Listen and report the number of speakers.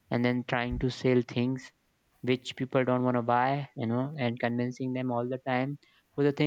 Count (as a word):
one